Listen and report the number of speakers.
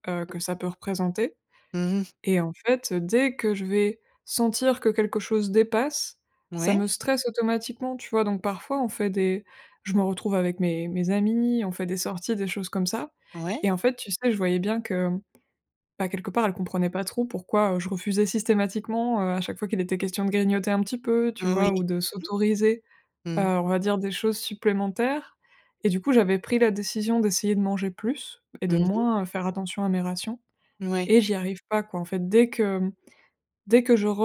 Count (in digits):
2